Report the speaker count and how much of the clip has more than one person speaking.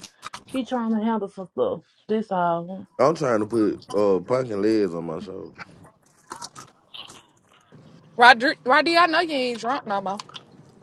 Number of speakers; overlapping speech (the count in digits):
3, no overlap